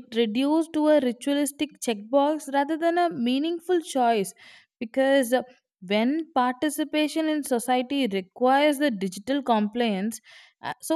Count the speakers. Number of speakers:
1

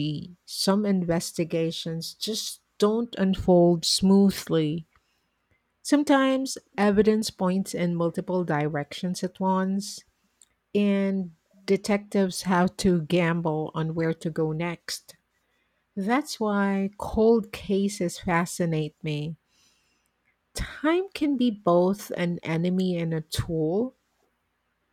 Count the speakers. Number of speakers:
1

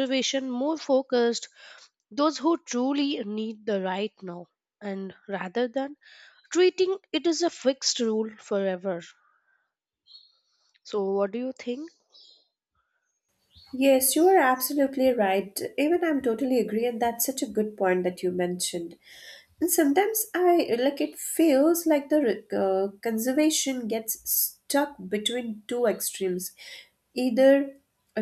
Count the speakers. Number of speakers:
2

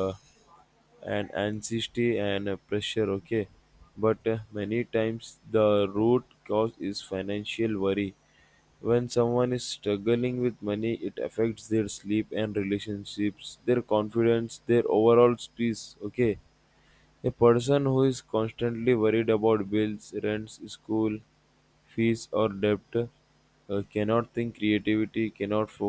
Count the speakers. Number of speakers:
1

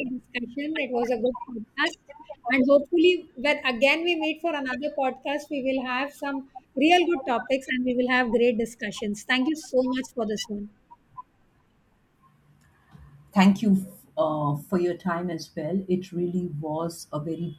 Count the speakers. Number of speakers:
2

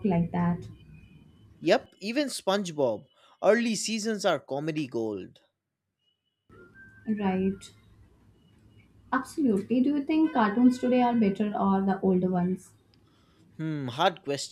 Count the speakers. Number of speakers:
2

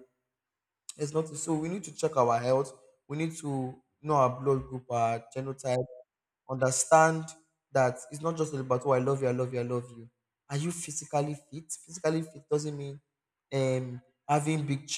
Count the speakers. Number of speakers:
1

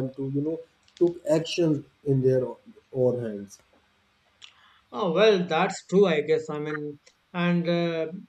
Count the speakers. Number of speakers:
2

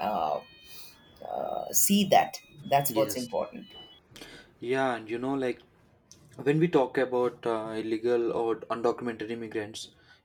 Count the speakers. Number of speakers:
2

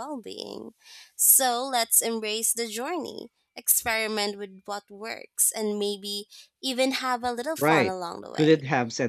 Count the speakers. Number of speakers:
2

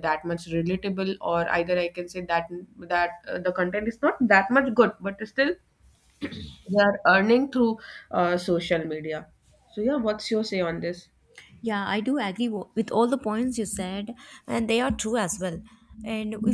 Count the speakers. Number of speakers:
2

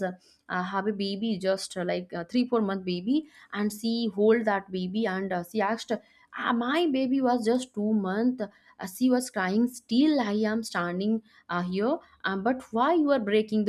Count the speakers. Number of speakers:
1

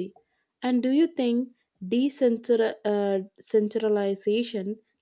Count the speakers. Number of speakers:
1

